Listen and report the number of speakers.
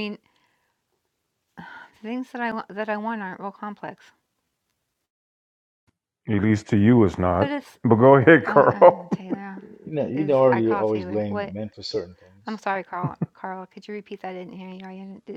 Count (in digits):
3